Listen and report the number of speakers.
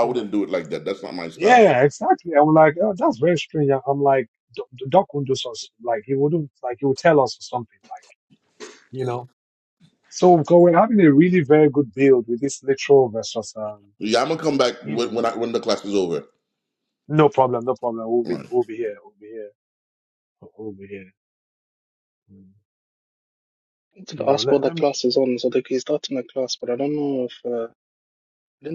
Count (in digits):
3